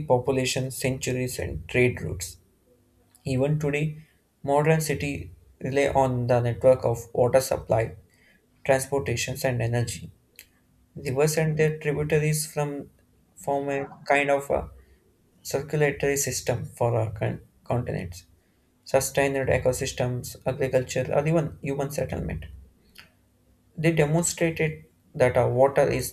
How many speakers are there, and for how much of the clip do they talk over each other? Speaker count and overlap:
1, no overlap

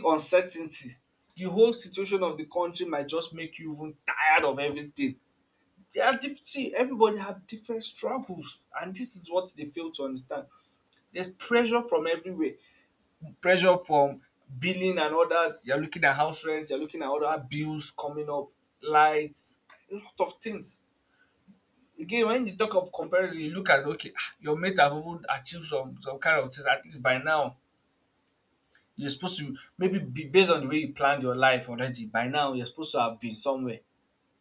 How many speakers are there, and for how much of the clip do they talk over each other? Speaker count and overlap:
1, no overlap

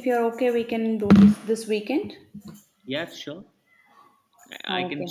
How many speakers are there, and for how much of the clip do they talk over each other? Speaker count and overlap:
2, about 8%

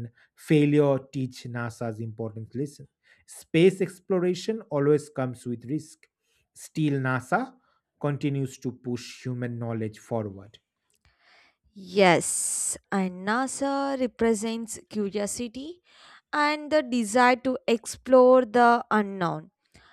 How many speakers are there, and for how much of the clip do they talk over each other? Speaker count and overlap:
2, no overlap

